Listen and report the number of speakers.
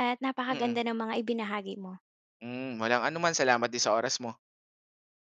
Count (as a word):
two